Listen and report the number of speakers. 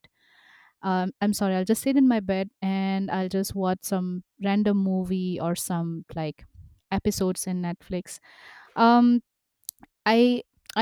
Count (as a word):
one